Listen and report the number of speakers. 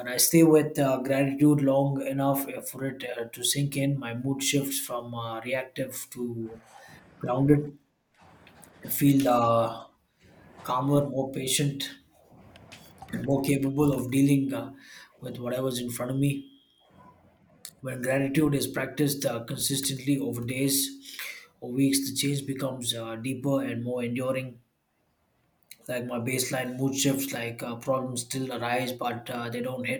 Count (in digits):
1